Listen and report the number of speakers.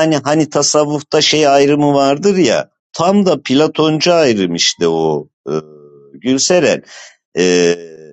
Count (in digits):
1